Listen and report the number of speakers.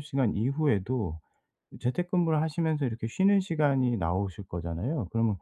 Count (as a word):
one